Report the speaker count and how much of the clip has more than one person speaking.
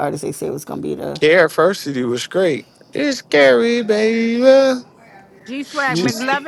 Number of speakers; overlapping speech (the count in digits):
3, about 3%